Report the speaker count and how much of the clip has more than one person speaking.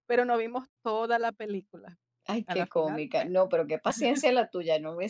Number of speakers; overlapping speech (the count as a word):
two, about 16%